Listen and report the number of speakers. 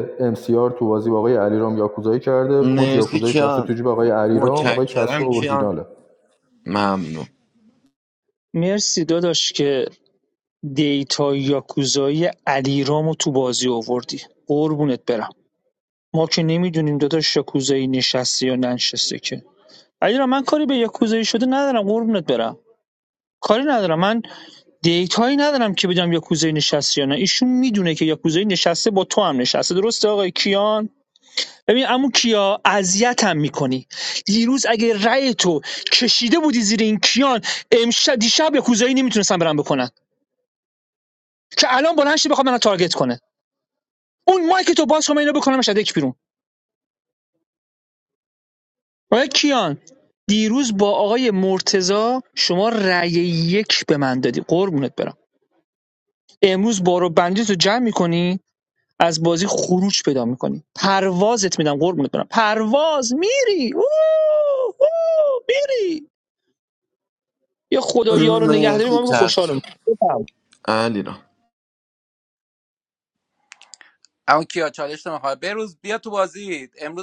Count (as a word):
four